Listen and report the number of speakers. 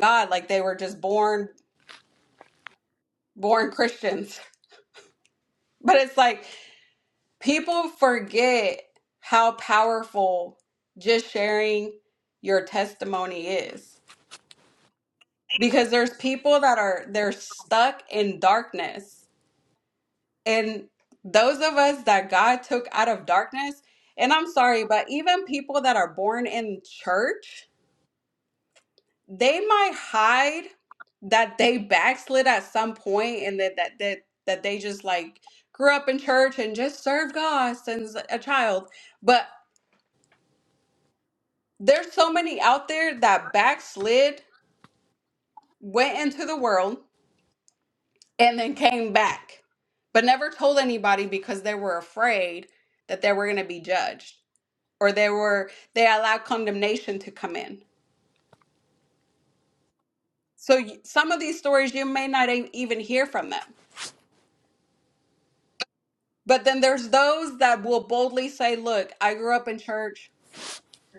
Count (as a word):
one